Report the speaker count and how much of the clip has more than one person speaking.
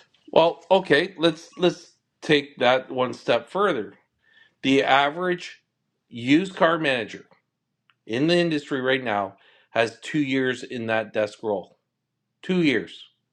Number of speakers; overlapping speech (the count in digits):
1, no overlap